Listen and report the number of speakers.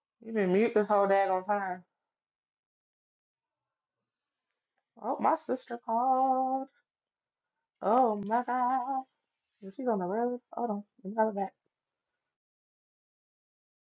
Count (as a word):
one